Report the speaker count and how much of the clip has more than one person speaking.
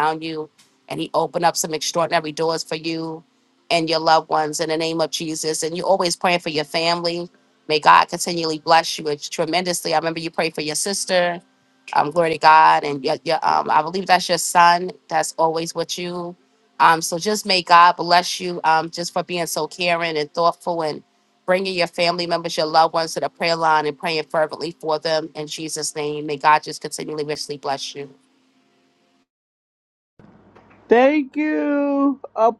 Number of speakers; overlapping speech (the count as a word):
two, no overlap